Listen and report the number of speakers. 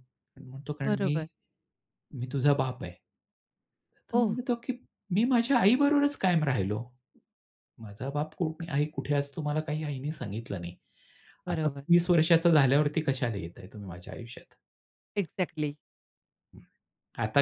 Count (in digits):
2